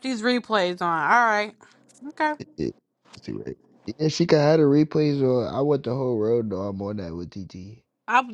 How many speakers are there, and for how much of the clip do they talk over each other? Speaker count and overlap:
2, no overlap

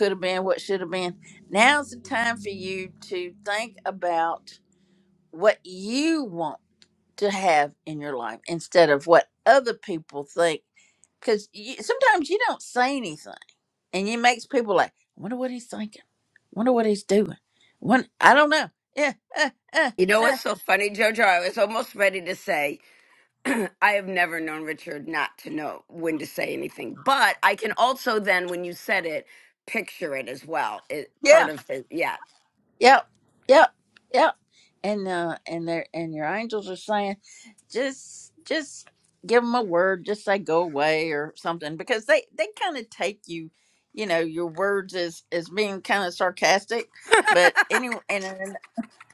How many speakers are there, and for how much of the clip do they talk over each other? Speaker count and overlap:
2, about 1%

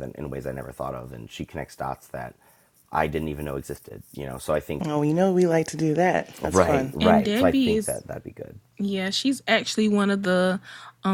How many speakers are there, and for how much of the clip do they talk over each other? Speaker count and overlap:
3, about 13%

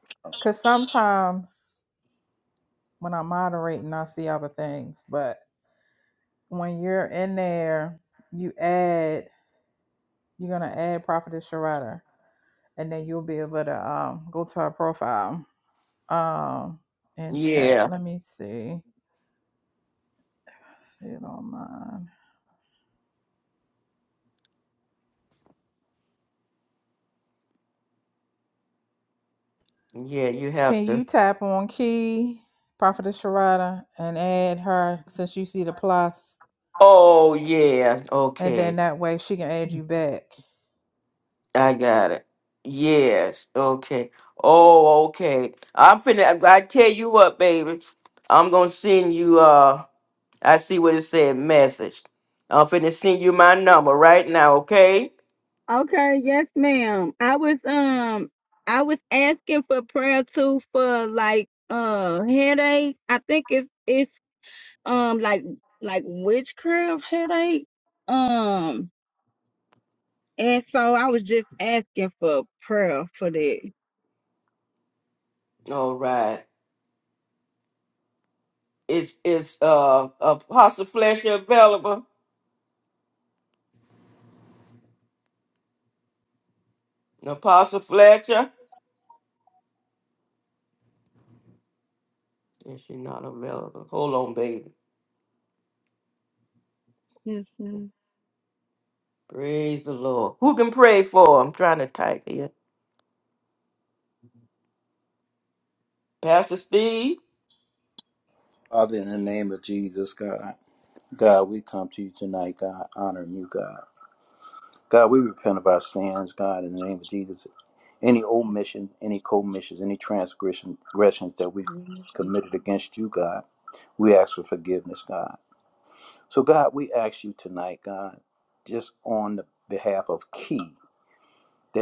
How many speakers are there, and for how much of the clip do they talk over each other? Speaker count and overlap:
4, about 1%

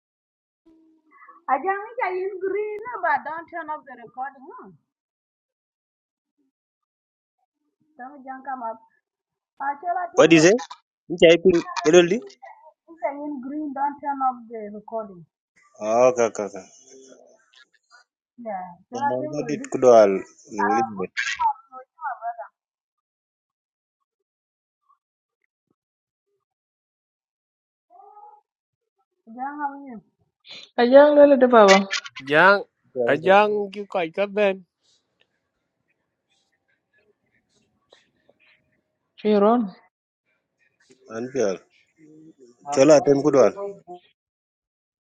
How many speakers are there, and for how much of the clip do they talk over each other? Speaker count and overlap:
4, about 3%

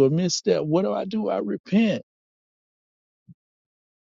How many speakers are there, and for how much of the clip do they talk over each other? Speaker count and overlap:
1, no overlap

